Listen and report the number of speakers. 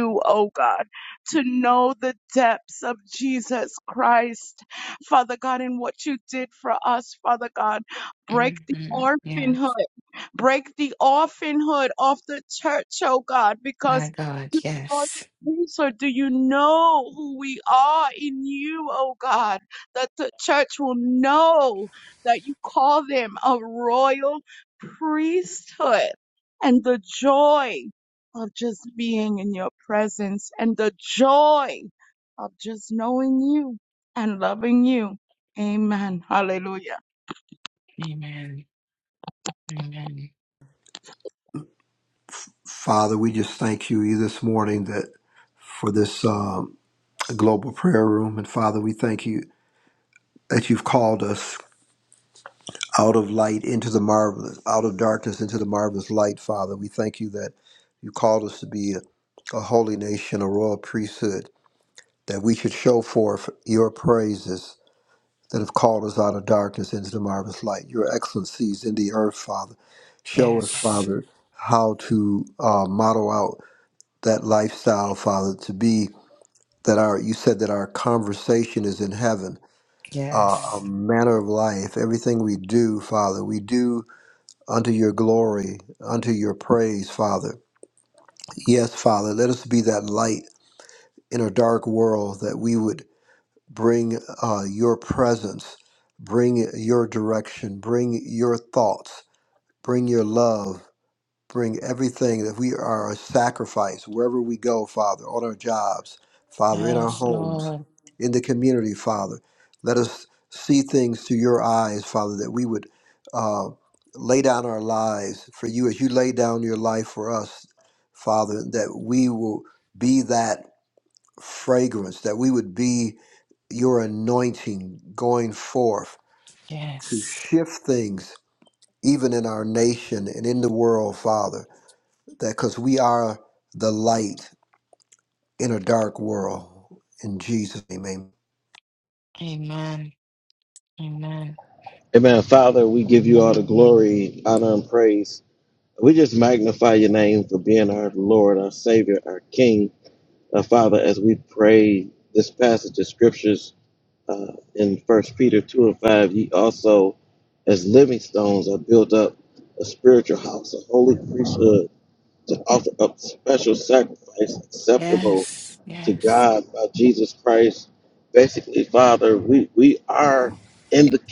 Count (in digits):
4